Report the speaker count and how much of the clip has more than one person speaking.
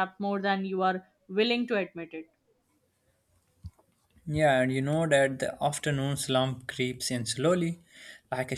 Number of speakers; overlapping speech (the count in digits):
2, no overlap